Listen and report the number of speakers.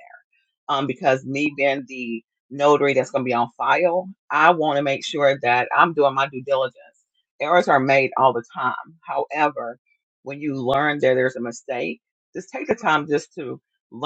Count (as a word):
one